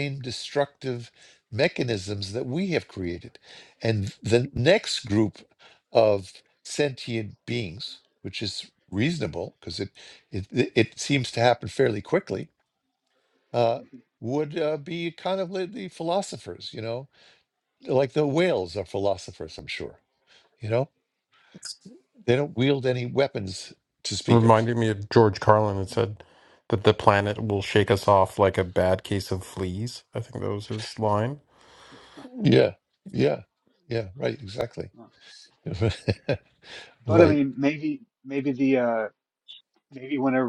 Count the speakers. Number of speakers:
3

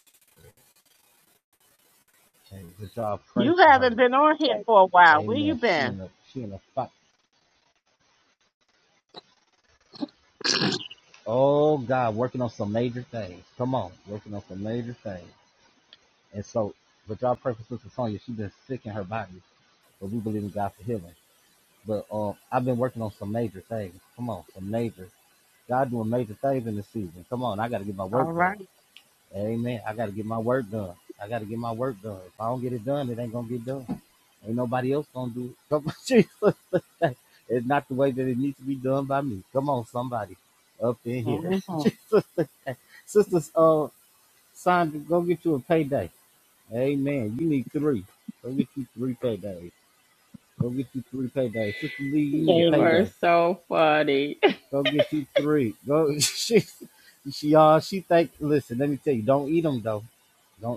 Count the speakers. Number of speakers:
3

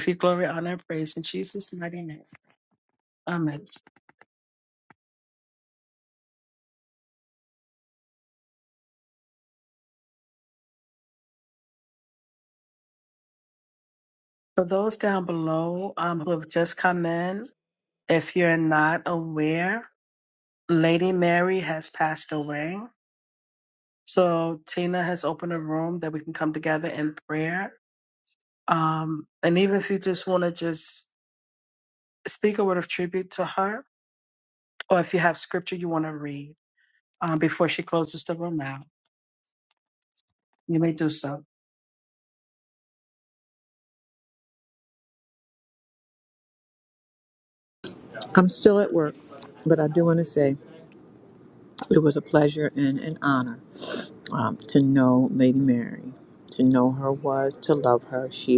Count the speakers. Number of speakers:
2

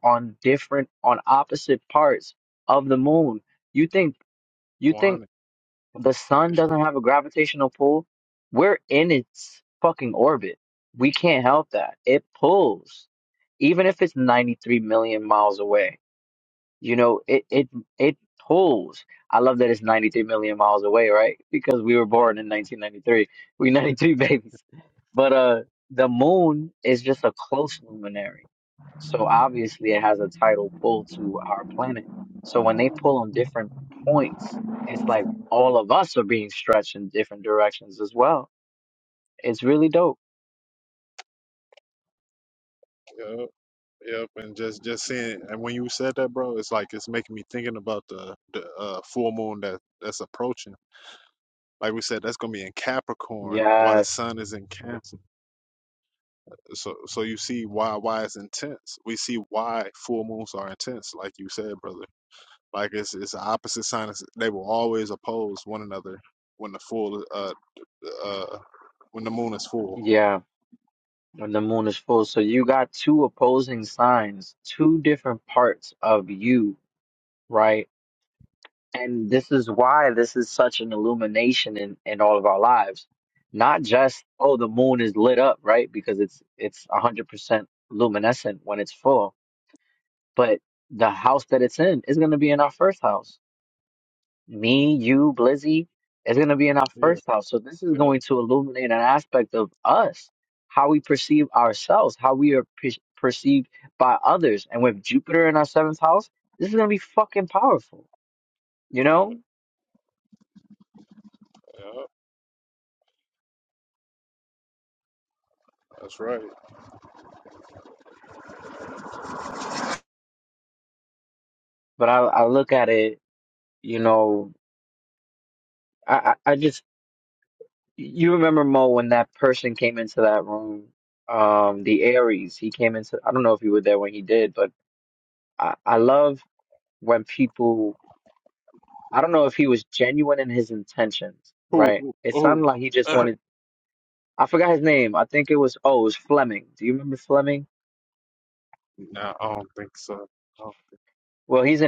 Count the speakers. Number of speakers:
2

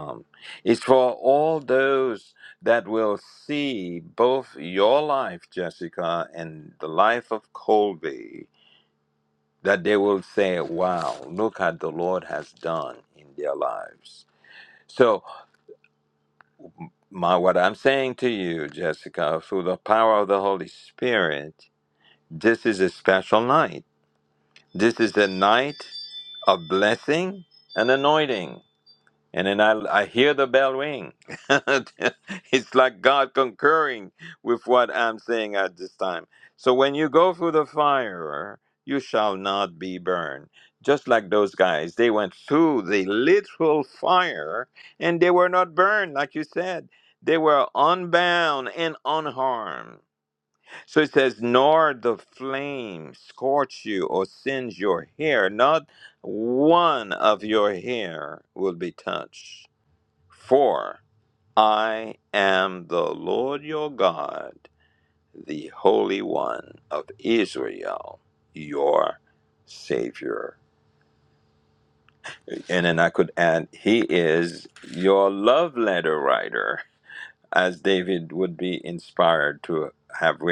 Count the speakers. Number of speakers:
1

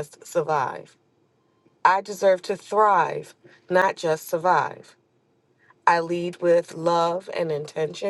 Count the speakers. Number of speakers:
1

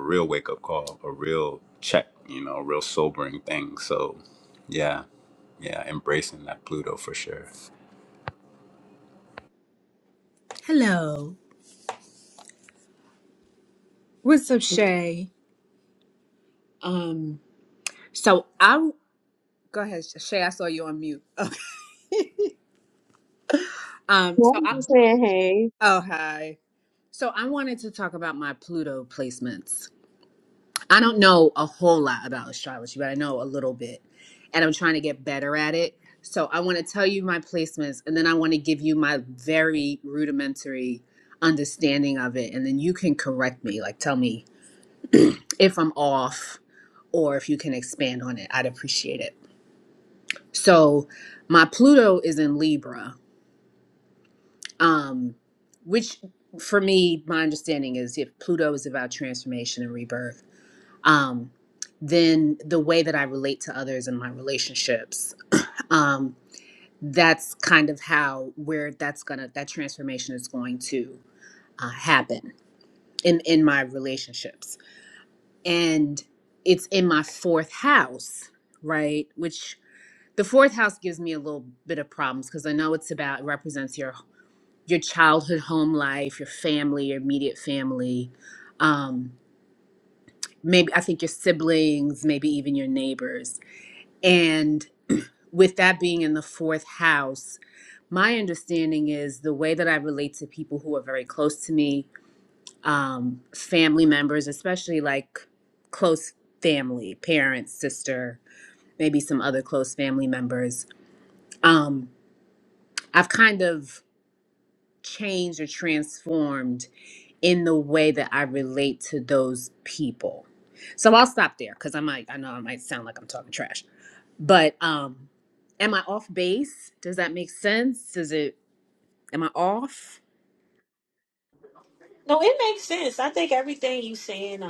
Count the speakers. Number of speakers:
4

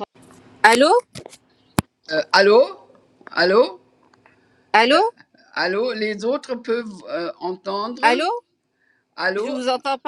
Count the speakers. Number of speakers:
2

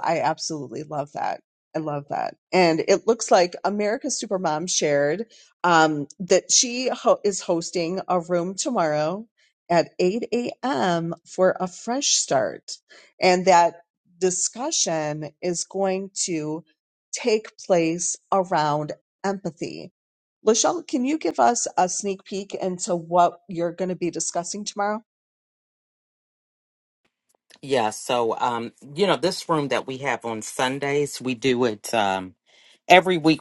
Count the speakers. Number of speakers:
2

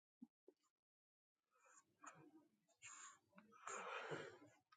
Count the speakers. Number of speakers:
0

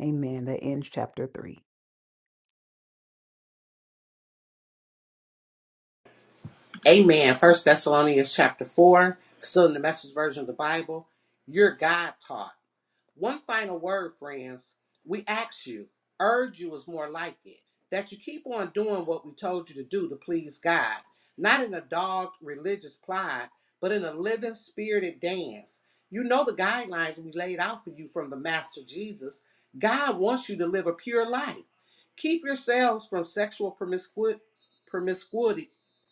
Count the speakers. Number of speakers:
2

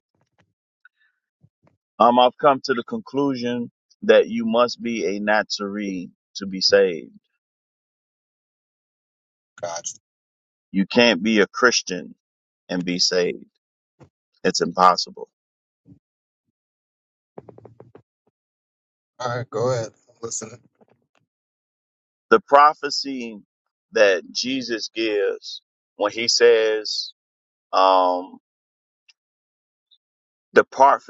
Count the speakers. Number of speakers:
2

